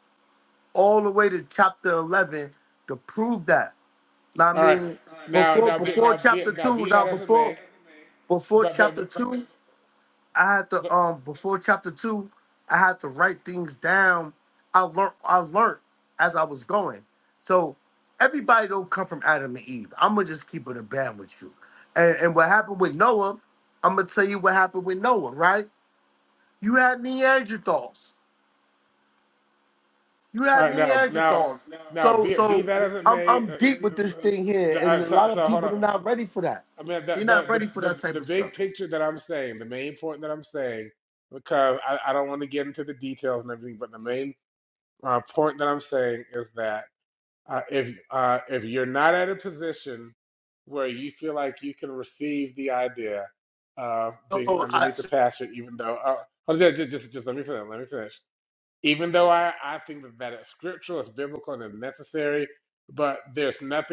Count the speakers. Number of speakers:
2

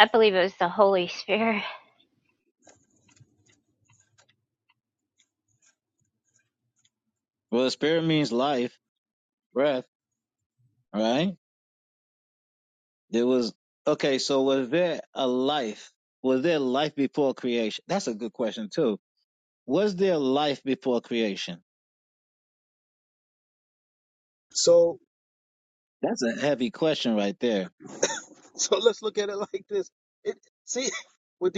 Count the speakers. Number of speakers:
3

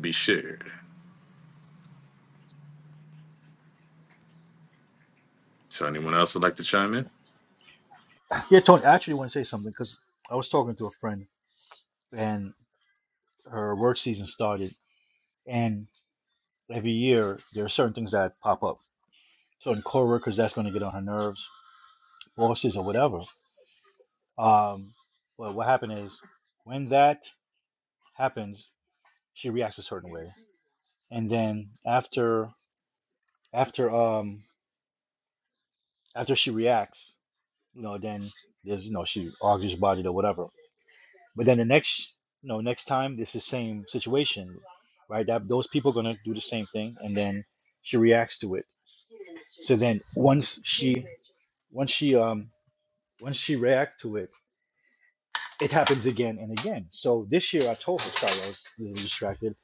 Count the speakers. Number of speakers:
2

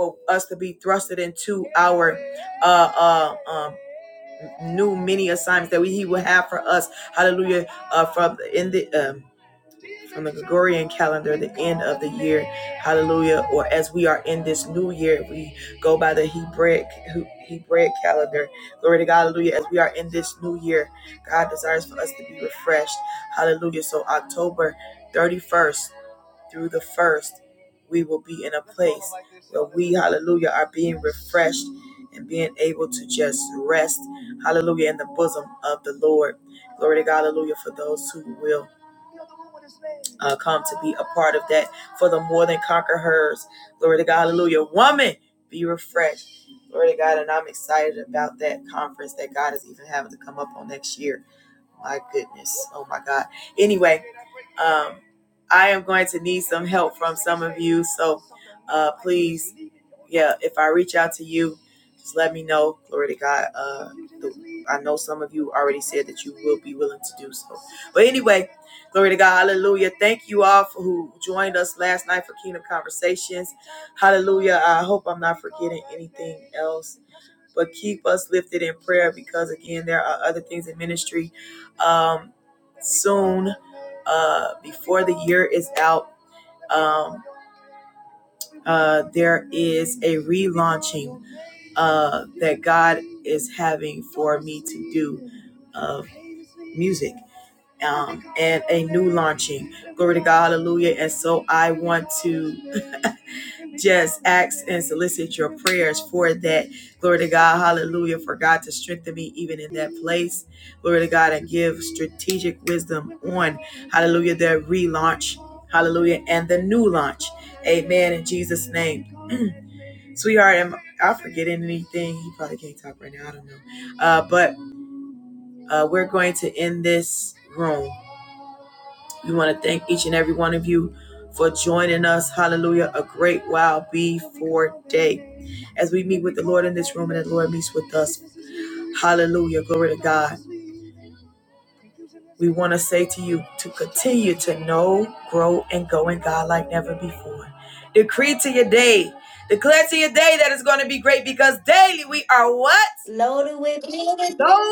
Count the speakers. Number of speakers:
2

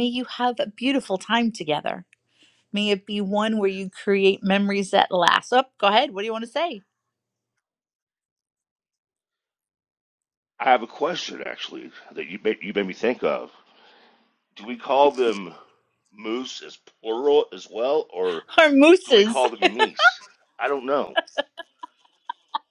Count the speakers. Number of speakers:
2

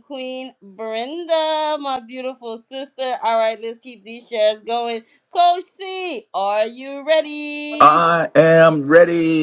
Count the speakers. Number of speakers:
2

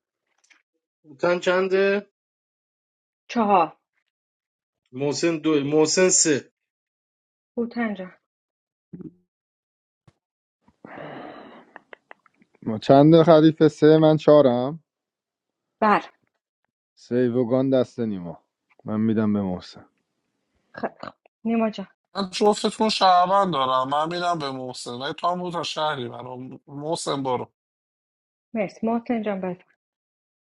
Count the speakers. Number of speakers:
4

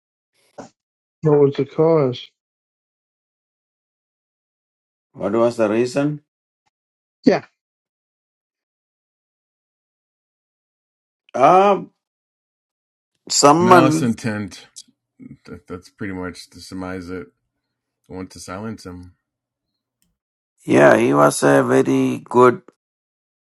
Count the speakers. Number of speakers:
3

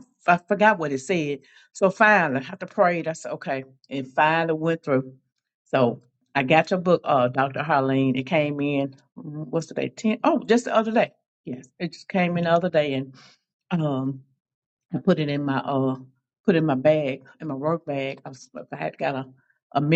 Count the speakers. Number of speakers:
1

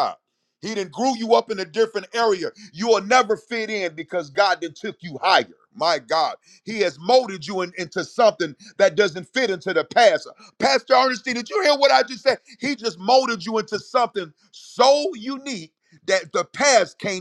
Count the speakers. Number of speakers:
1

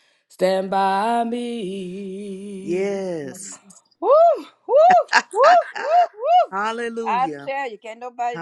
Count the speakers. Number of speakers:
3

